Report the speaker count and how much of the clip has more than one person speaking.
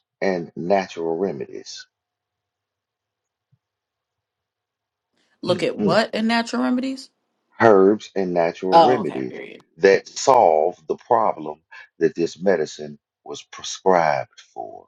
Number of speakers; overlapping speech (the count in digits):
2, about 7%